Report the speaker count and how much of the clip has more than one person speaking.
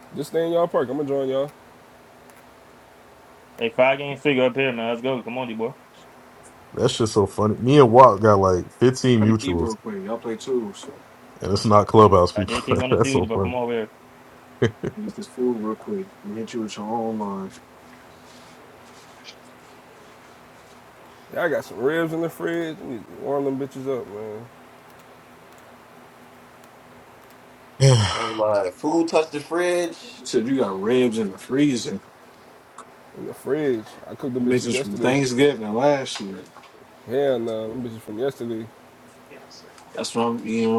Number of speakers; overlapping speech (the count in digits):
5, about 6%